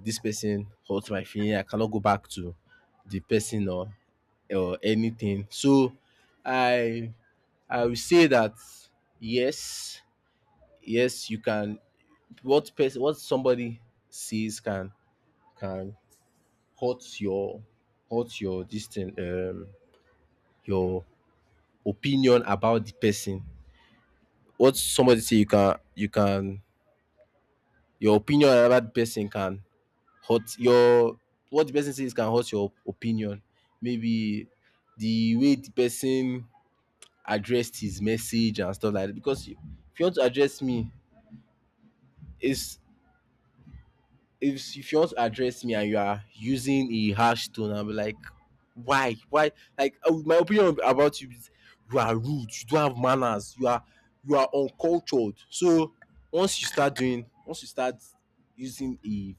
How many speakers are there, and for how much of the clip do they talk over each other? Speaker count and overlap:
one, no overlap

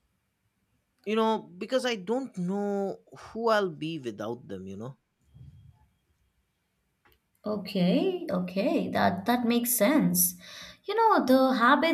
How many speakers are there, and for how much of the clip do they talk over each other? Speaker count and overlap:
two, no overlap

